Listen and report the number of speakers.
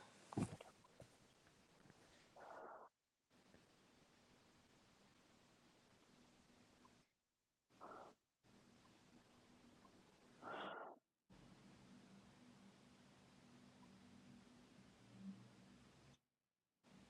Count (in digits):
0